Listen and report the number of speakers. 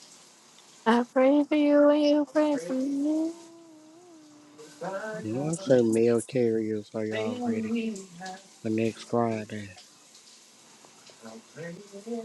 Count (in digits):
3